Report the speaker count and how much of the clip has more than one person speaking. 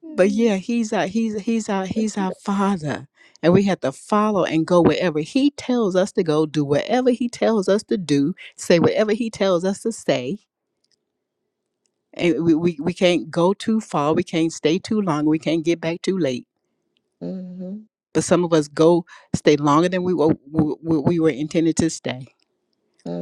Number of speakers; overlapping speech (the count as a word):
two, about 1%